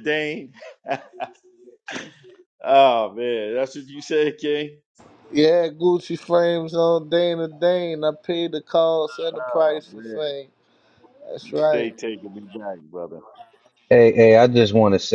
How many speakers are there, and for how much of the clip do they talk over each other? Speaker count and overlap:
three, about 7%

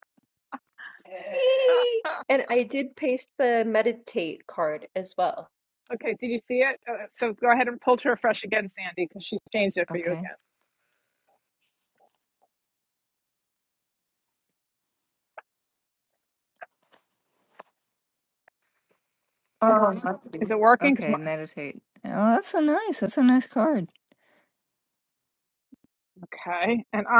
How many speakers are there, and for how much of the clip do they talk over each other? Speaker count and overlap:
three, about 4%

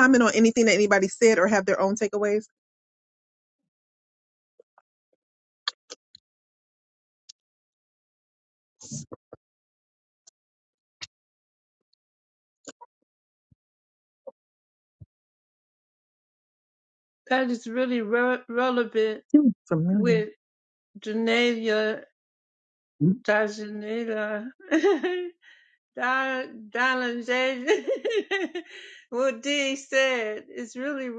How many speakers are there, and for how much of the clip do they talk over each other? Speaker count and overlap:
two, about 1%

